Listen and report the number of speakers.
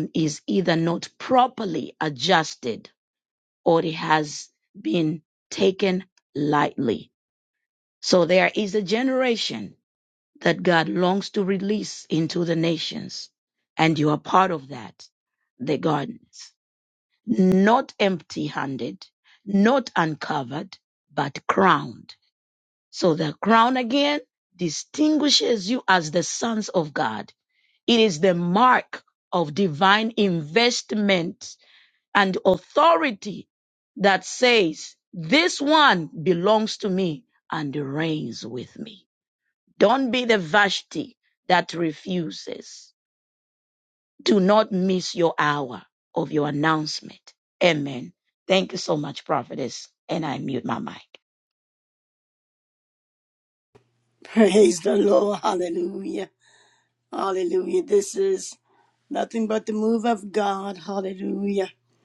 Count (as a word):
two